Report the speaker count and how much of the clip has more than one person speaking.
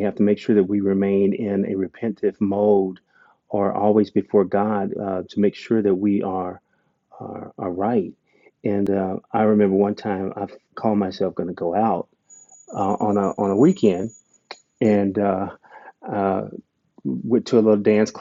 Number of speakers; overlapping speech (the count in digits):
1, no overlap